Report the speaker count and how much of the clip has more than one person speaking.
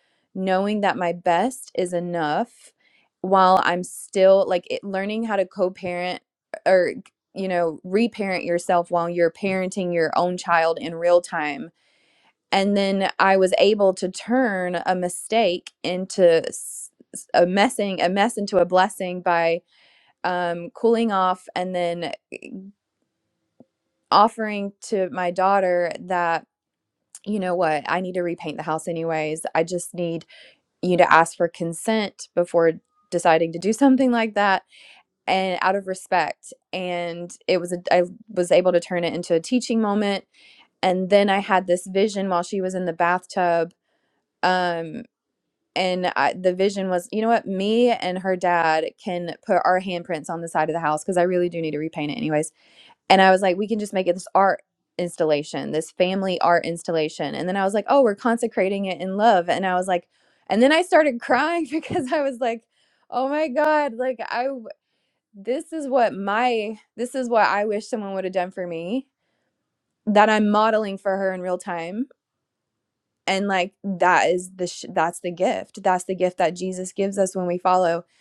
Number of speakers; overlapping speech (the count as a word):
one, no overlap